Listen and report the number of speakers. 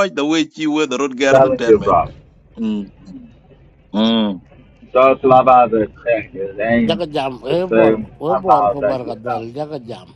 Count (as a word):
three